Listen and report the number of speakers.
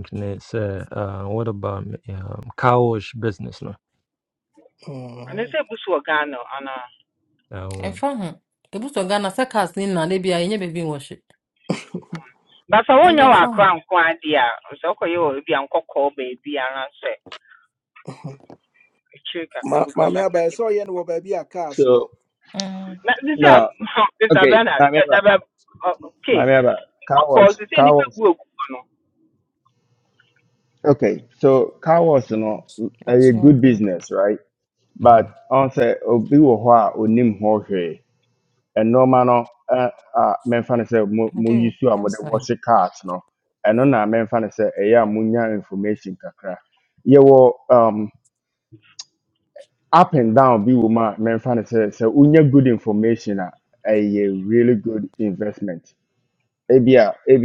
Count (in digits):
5